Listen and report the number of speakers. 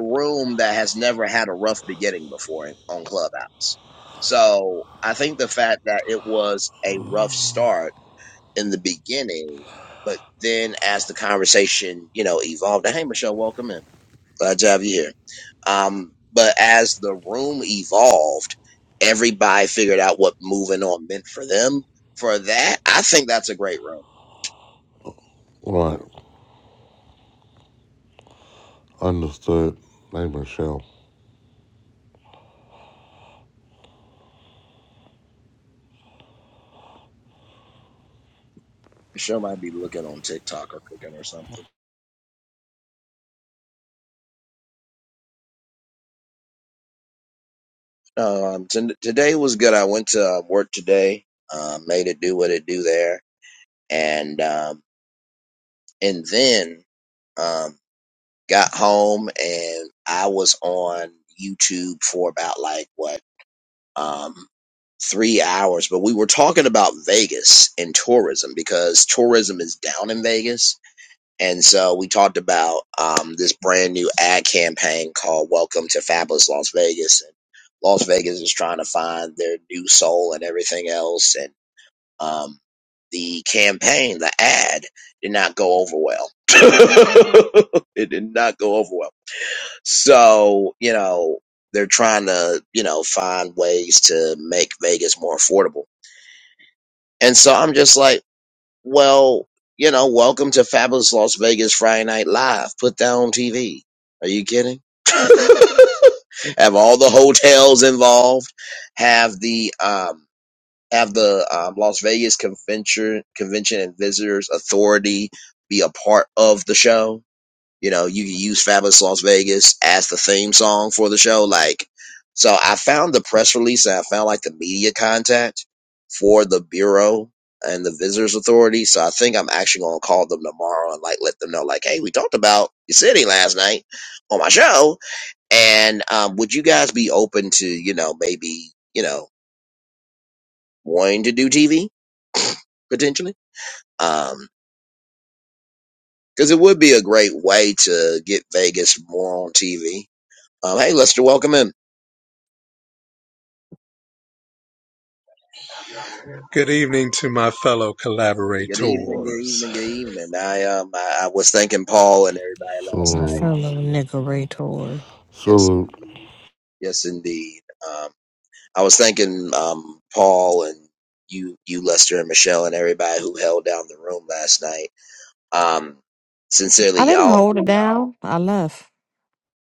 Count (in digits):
4